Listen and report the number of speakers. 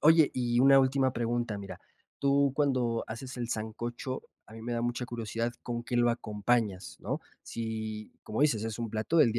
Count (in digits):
1